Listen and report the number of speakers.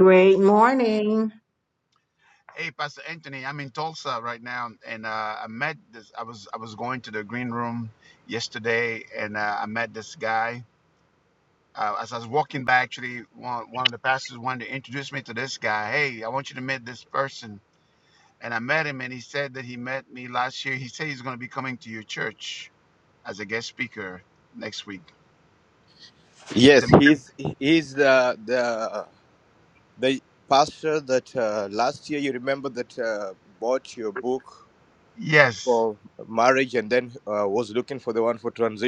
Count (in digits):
3